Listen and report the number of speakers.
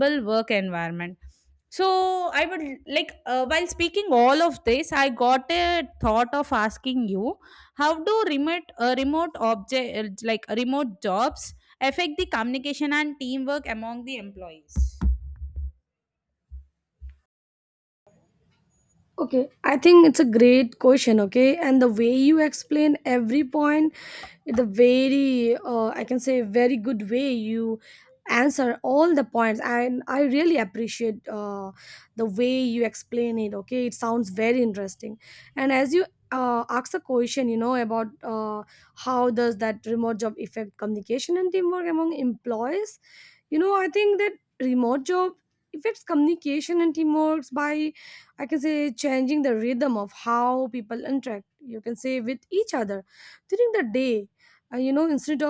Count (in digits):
2